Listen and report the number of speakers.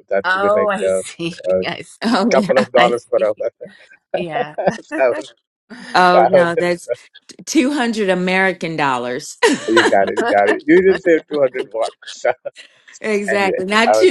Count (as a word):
three